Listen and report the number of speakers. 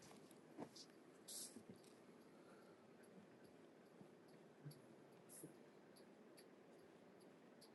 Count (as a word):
zero